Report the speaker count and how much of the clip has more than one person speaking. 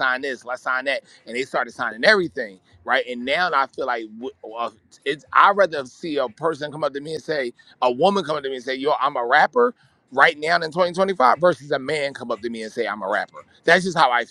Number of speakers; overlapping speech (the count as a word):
one, no overlap